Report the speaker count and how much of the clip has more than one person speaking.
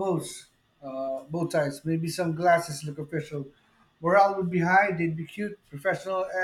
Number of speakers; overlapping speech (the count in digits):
1, no overlap